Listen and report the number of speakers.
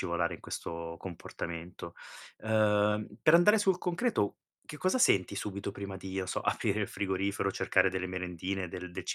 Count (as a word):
one